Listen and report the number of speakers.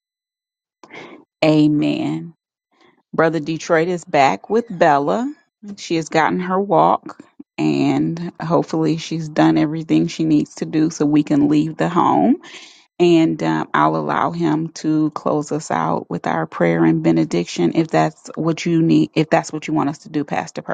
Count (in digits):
1